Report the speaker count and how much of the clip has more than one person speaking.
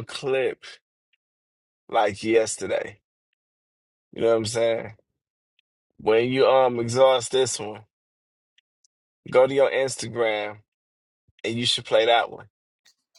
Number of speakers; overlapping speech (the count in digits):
1, no overlap